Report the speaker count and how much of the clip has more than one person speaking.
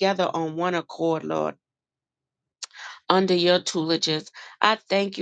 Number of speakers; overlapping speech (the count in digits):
1, no overlap